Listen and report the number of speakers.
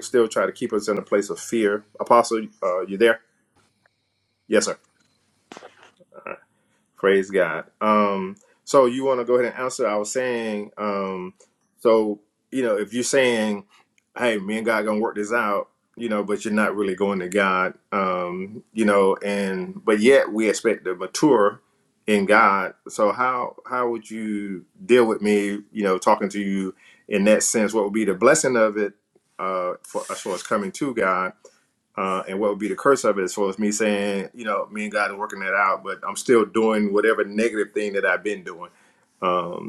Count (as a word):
one